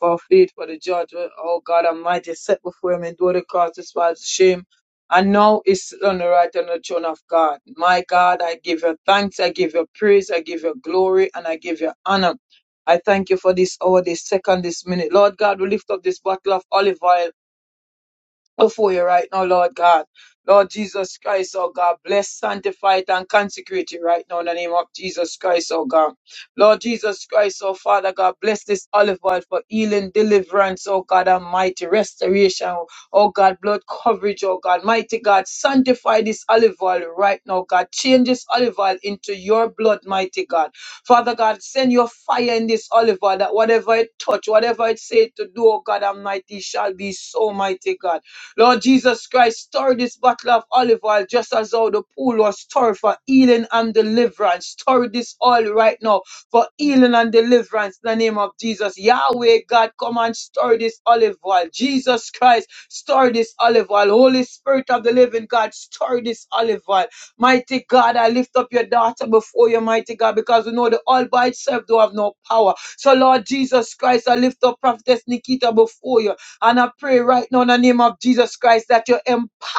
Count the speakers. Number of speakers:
one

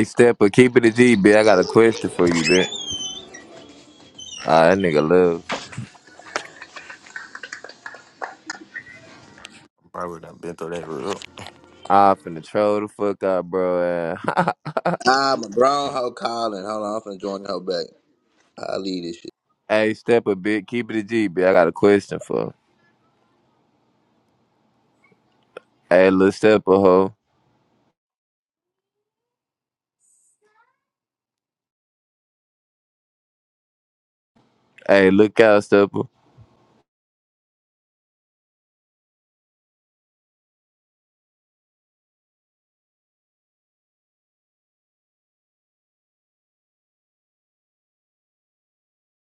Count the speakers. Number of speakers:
three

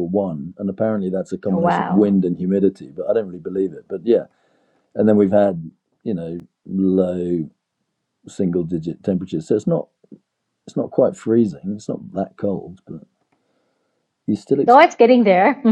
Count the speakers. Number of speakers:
two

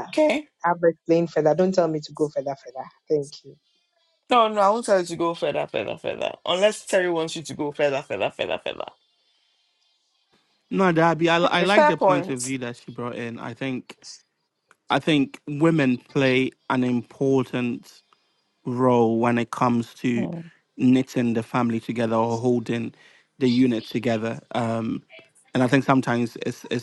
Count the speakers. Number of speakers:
three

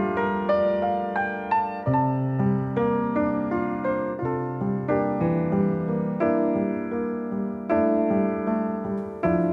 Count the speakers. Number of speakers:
zero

